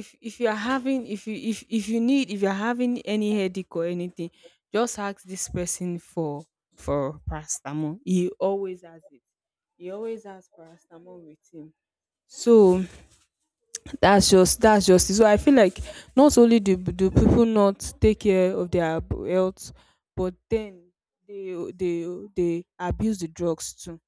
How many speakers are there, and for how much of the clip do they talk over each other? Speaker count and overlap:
1, no overlap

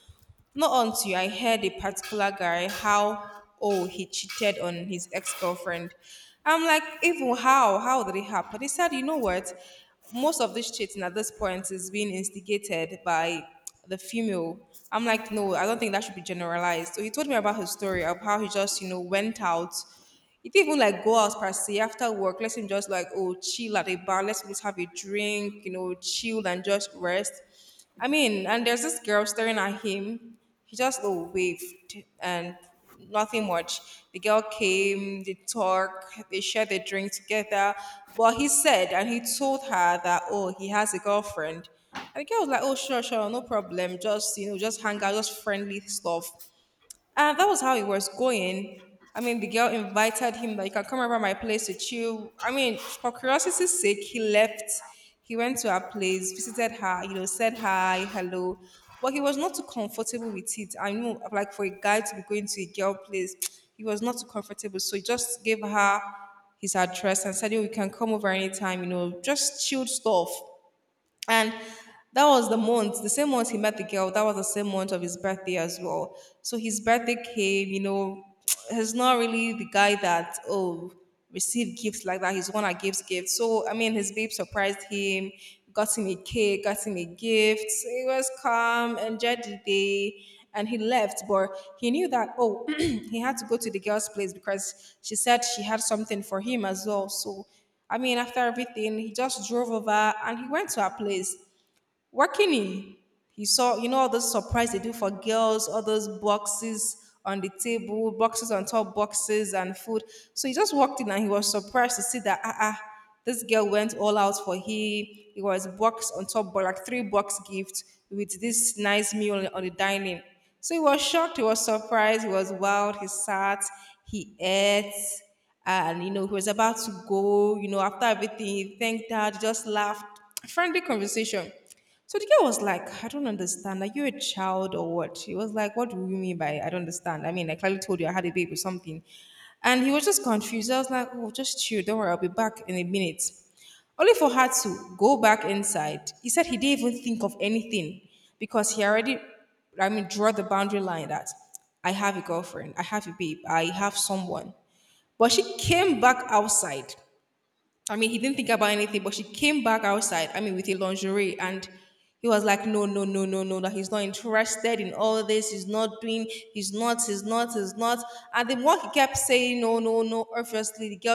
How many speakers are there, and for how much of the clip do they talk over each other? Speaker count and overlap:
1, no overlap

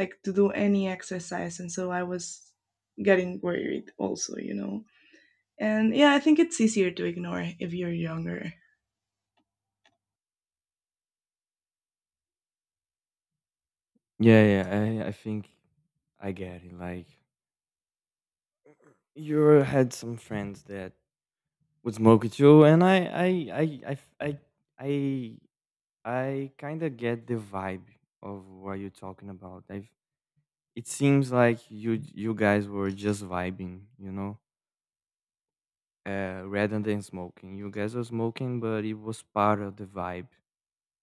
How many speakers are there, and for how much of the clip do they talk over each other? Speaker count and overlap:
2, no overlap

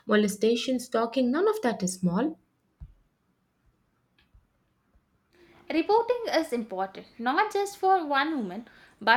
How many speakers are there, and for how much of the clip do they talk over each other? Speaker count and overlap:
2, no overlap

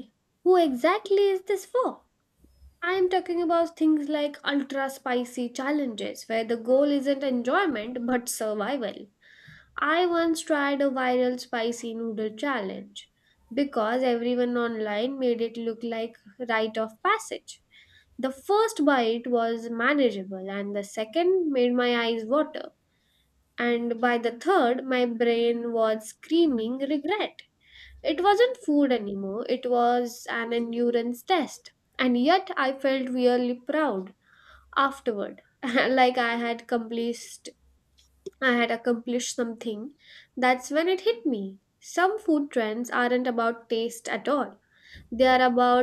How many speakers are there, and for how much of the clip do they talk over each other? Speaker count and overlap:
1, no overlap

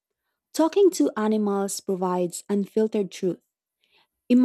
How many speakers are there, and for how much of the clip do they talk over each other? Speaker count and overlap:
1, no overlap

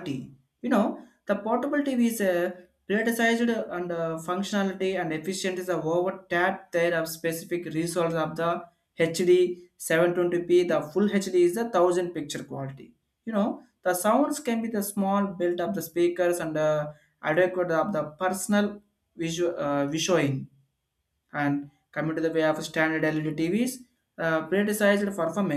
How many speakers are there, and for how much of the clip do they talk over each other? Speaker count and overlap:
1, no overlap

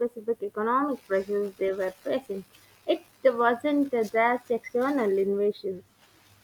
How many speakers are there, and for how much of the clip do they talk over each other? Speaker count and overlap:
1, no overlap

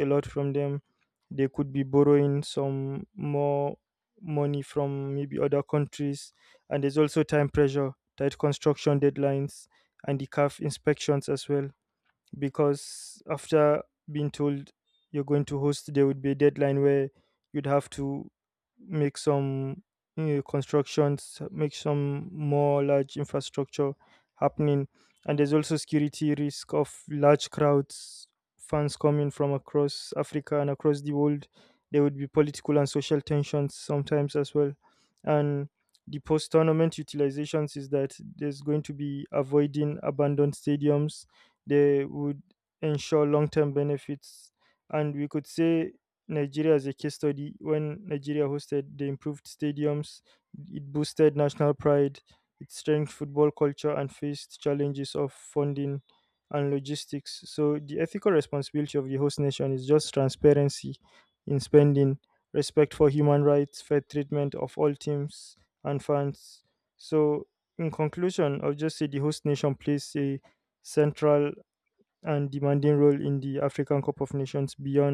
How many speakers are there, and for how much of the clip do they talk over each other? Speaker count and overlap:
1, no overlap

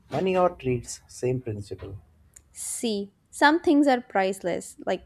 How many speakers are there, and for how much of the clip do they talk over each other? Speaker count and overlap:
2, no overlap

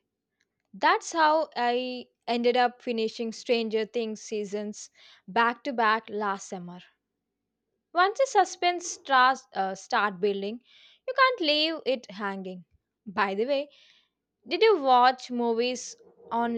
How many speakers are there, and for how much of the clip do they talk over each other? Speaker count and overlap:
1, no overlap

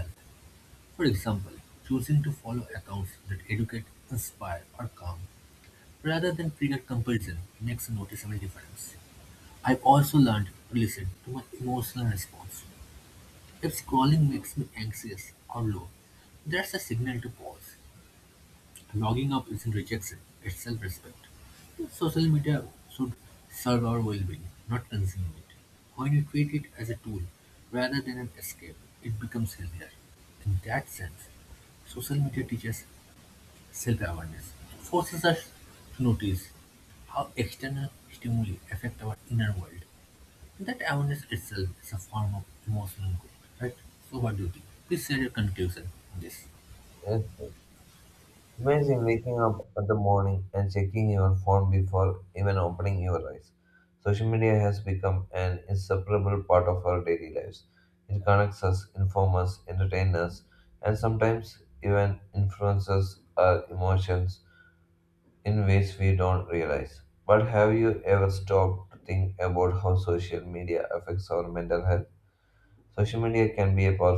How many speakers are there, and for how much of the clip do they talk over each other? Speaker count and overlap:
2, no overlap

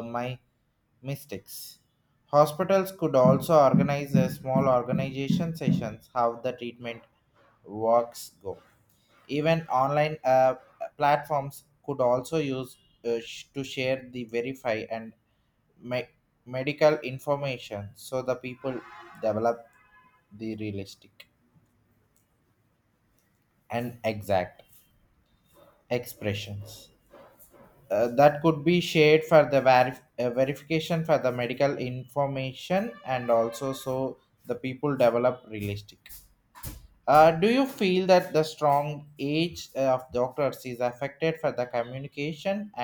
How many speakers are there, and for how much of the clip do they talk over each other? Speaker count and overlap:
1, no overlap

